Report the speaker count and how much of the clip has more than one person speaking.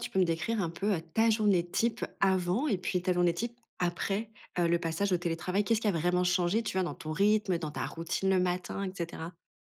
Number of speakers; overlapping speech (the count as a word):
one, no overlap